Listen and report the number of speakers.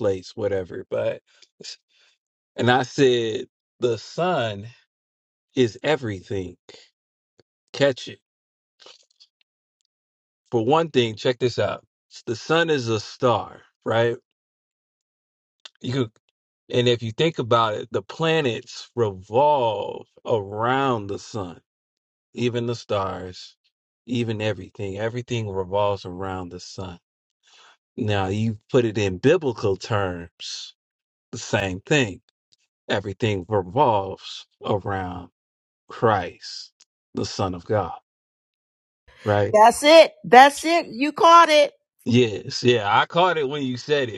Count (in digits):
2